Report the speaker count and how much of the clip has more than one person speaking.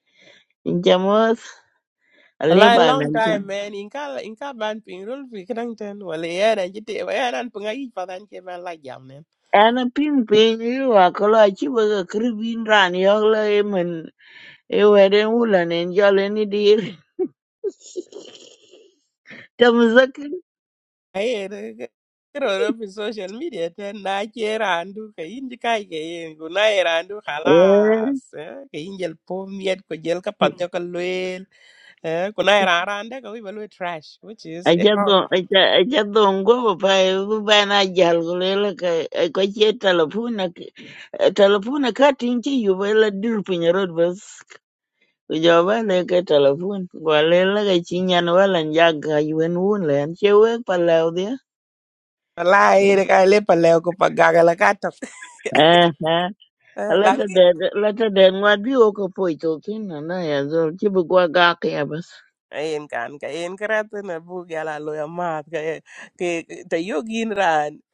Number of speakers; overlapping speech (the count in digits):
2, about 2%